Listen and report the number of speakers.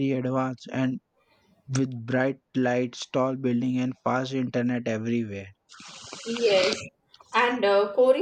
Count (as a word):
two